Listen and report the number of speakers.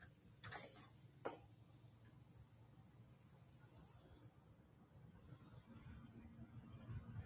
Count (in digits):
0